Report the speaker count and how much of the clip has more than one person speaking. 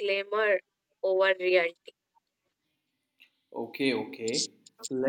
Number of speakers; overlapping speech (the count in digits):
2, no overlap